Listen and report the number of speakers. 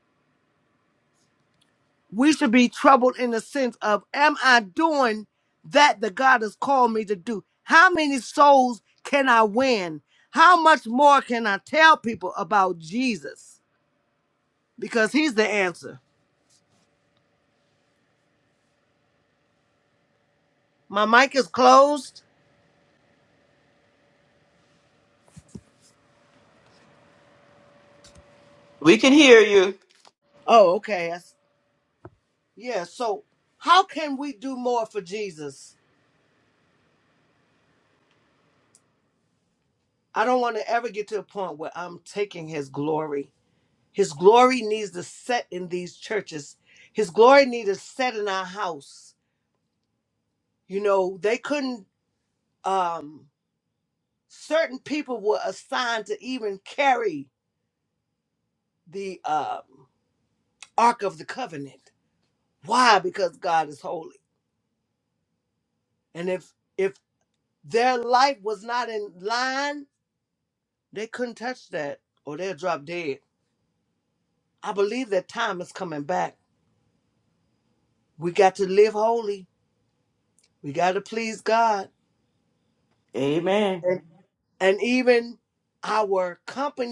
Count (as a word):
two